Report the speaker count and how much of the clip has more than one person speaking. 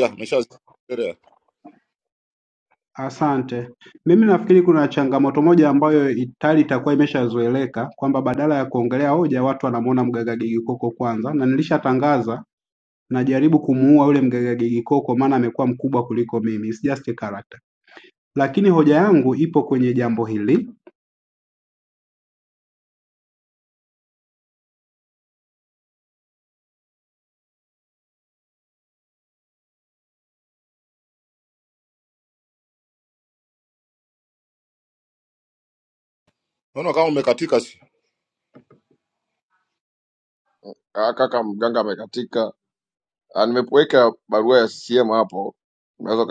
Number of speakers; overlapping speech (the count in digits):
3, under 1%